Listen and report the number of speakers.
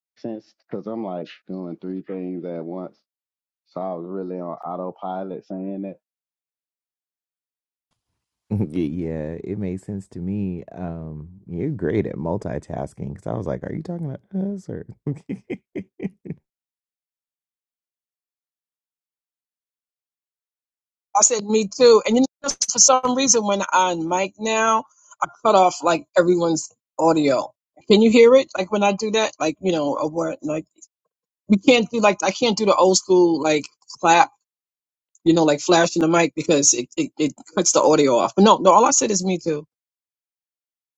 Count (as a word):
three